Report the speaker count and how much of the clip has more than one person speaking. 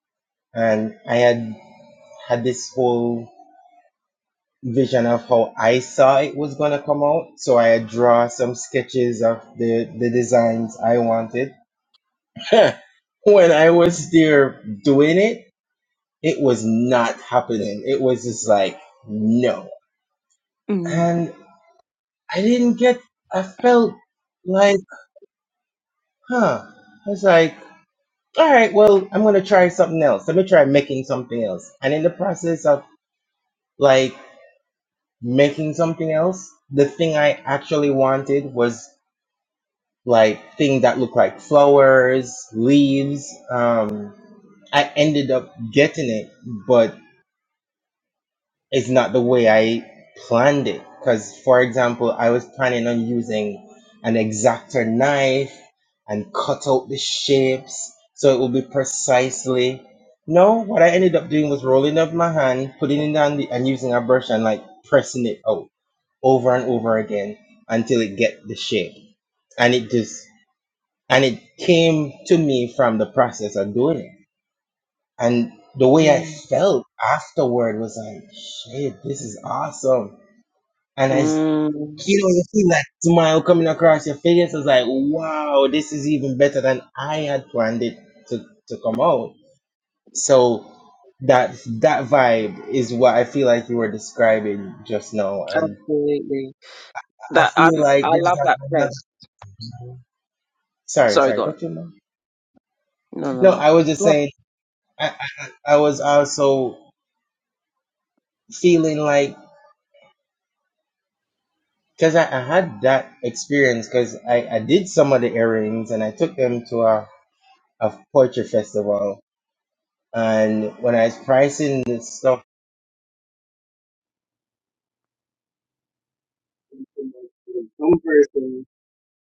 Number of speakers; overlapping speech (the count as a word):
two, about 2%